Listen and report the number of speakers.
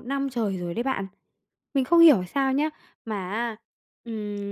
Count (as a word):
one